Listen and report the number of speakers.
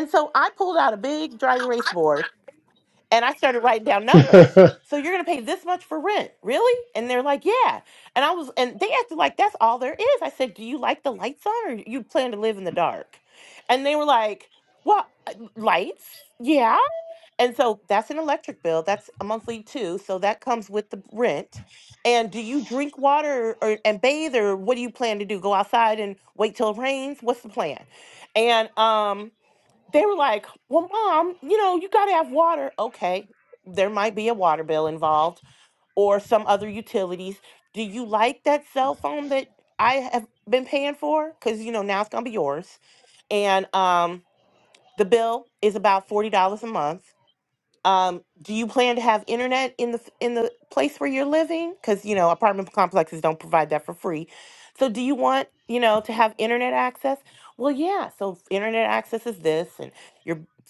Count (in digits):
1